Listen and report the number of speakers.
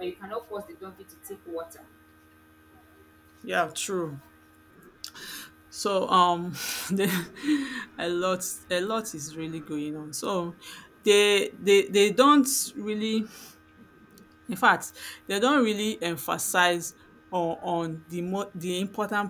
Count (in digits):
2